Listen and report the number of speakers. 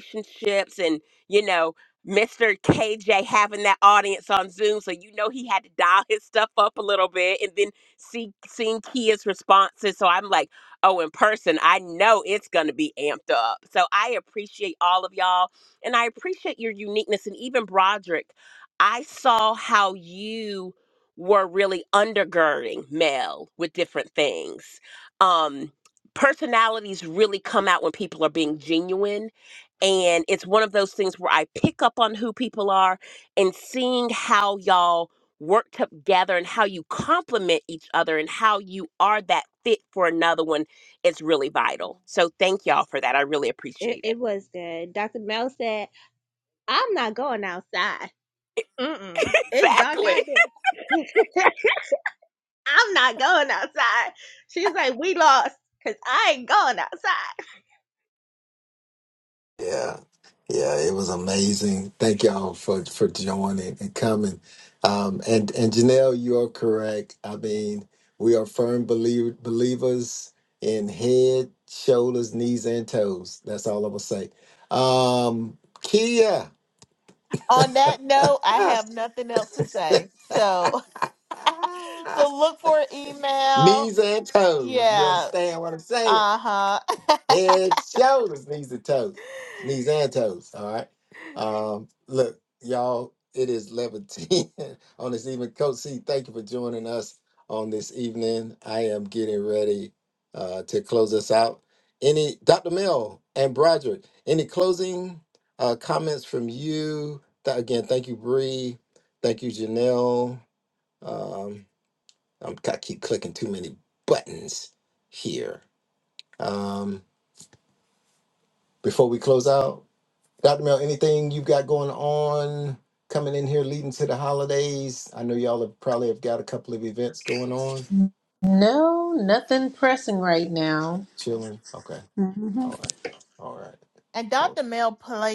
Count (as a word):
five